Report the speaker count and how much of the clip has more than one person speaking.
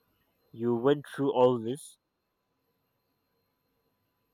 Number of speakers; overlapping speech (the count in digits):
1, no overlap